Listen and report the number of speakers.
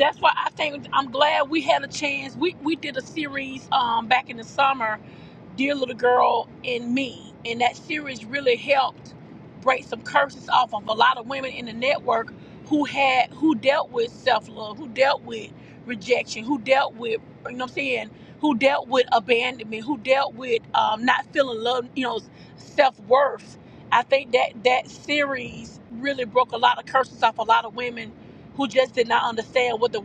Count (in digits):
1